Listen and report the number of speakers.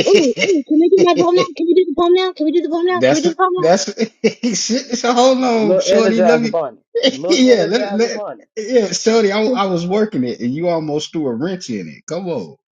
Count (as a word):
three